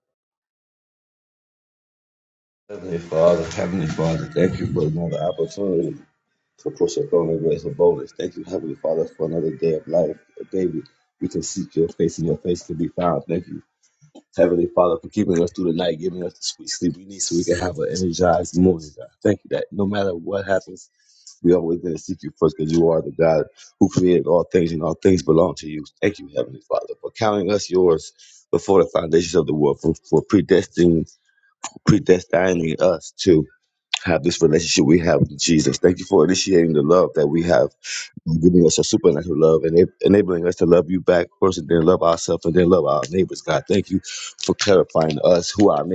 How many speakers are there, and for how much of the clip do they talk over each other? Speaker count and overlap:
1, no overlap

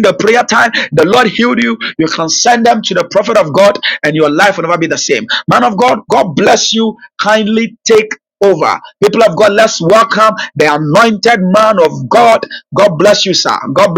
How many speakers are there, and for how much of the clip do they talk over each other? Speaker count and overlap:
1, no overlap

